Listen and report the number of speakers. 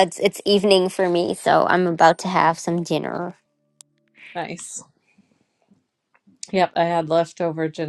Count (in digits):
2